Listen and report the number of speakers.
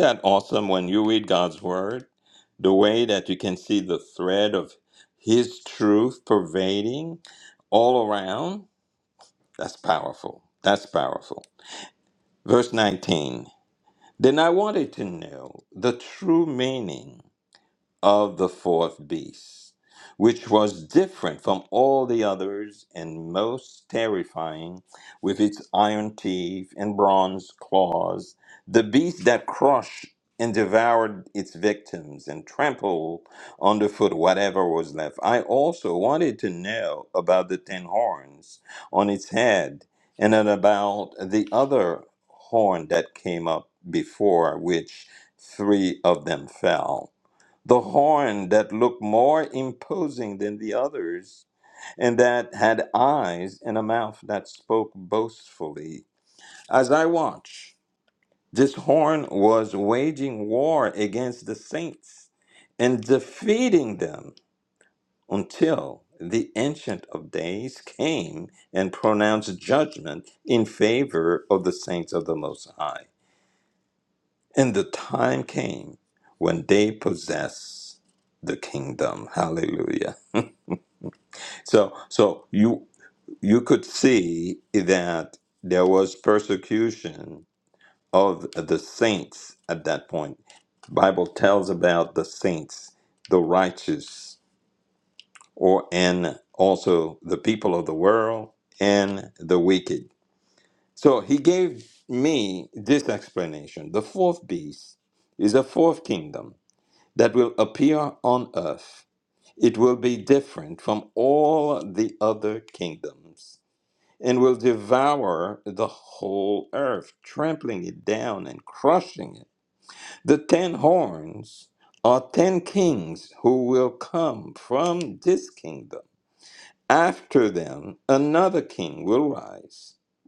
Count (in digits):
1